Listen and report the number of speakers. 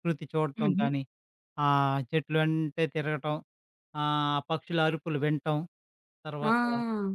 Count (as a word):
two